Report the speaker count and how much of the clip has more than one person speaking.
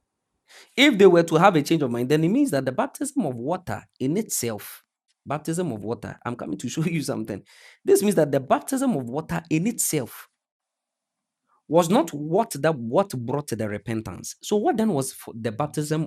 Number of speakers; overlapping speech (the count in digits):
1, no overlap